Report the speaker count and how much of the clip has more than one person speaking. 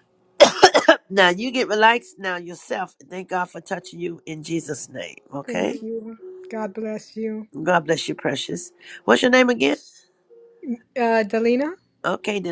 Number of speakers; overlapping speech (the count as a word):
two, about 3%